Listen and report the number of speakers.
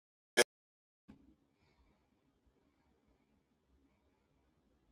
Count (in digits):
0